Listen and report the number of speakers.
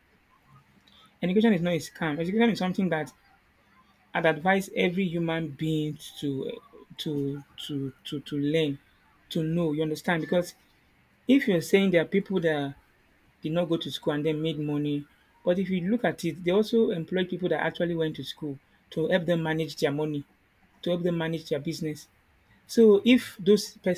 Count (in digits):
1